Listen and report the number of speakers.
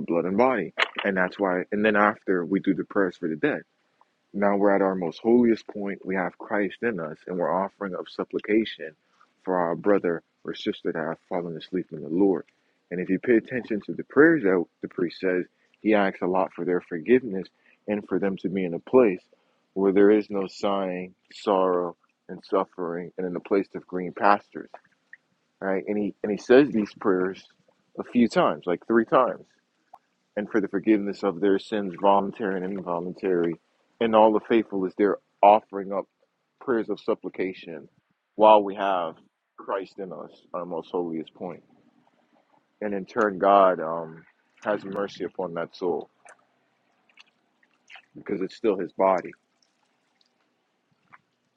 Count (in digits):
1